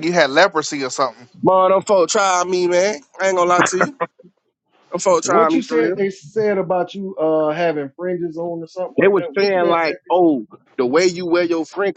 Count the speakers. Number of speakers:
three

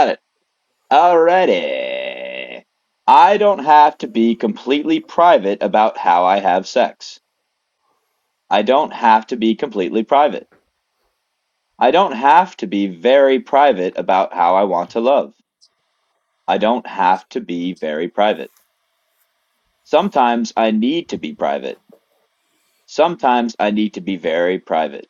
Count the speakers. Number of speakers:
one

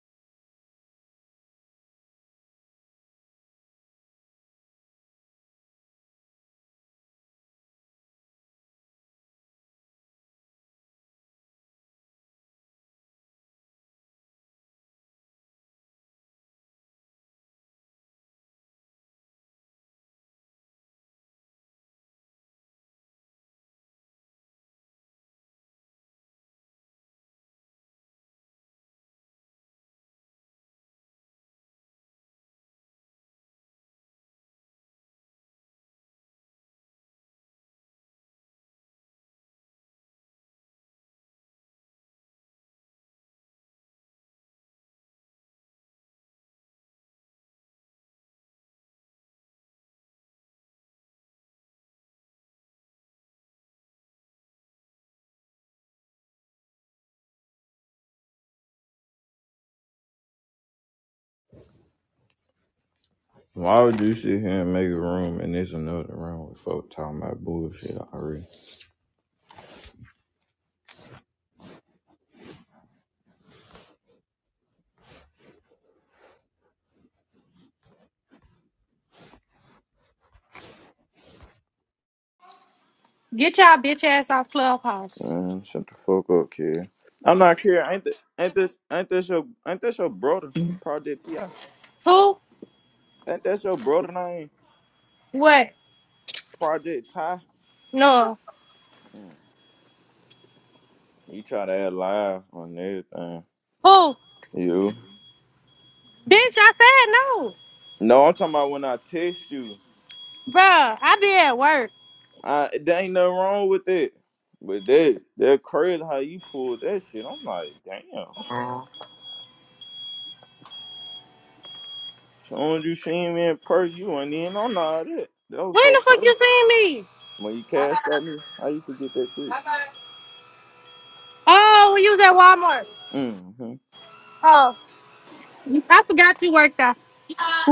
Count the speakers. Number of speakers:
two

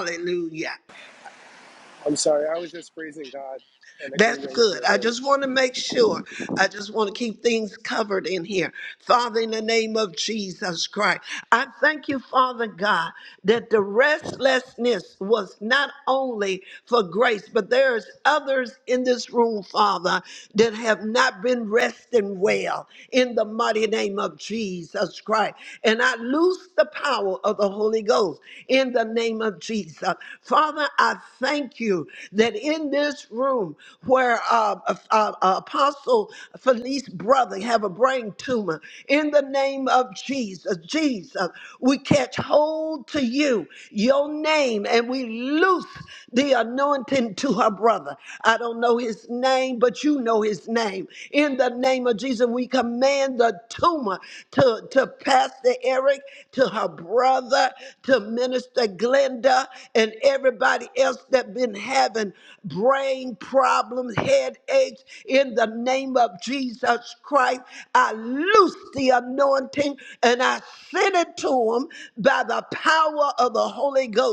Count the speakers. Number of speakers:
two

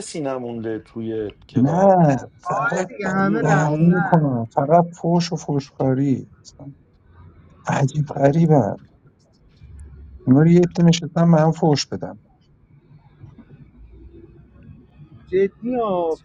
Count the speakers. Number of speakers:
three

